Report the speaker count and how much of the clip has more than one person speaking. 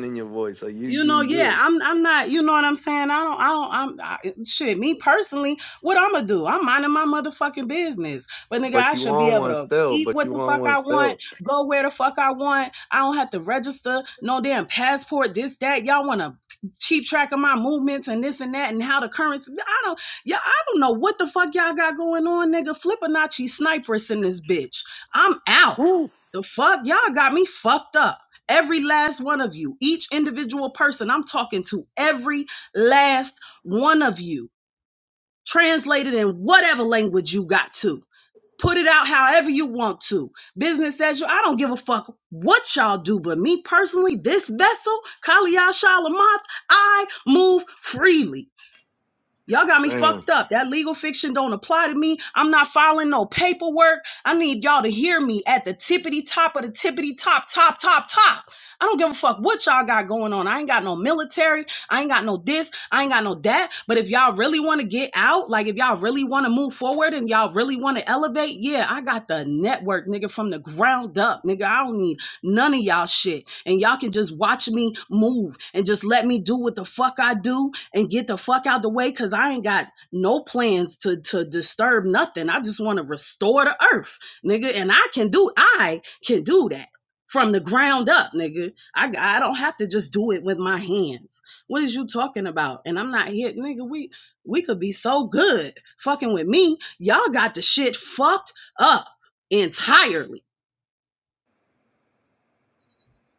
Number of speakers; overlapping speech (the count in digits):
2, about 3%